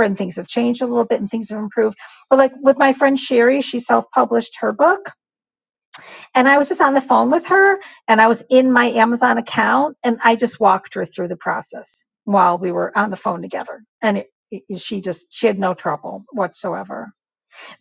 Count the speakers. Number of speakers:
1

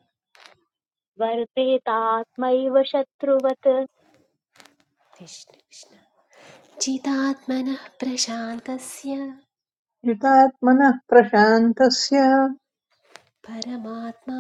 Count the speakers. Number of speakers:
3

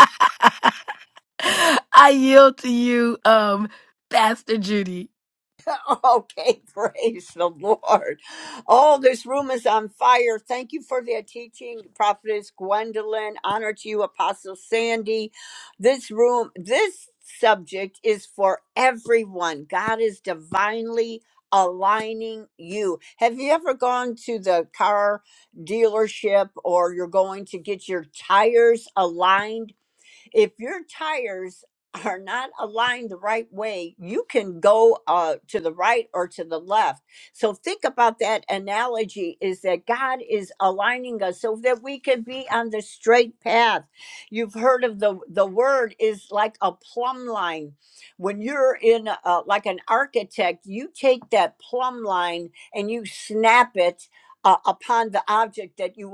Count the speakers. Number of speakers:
2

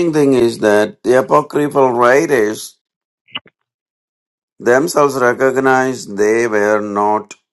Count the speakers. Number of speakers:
1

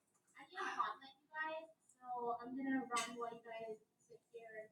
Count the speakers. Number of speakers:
0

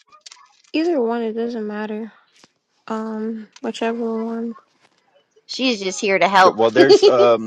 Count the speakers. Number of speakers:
3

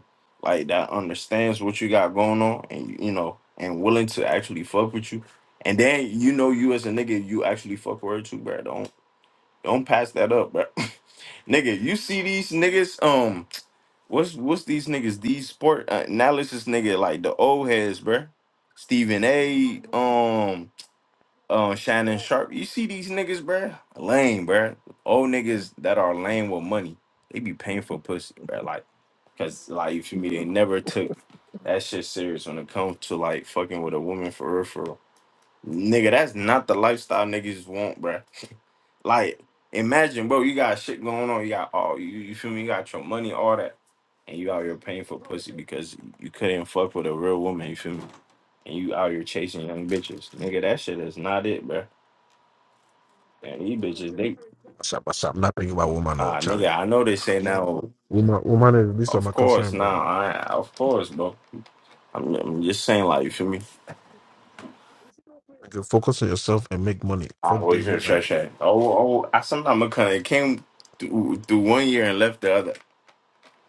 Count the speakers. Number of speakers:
2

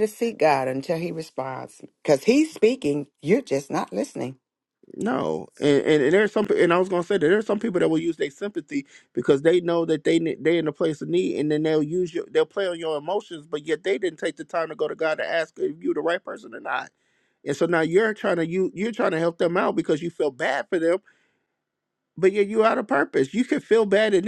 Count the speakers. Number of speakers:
2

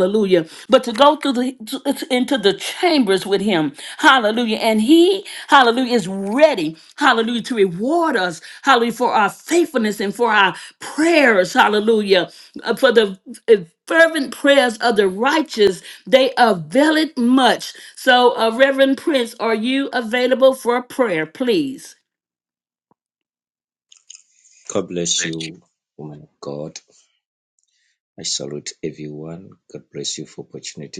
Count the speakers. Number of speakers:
2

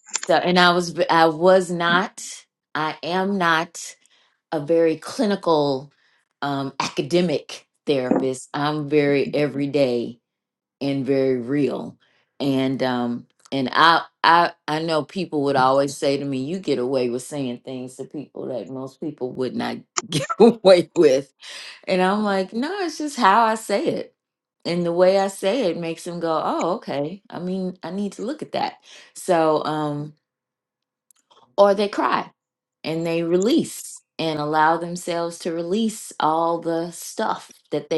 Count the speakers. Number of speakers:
1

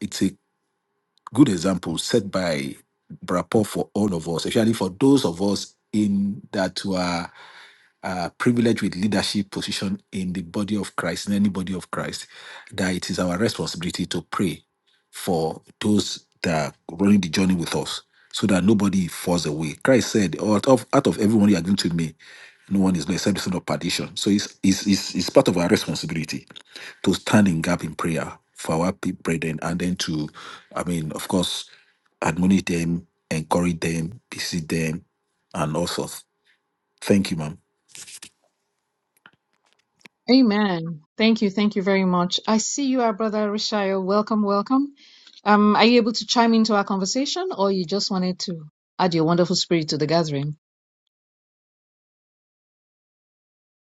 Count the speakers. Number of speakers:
2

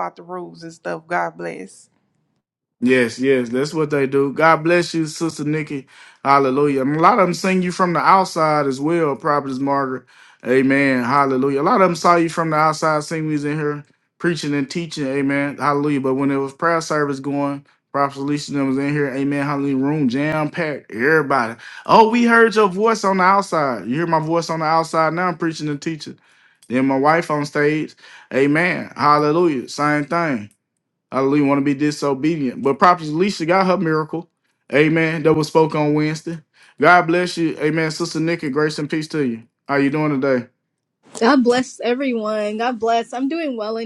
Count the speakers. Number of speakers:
3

